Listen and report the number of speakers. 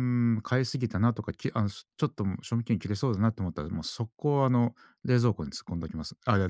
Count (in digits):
1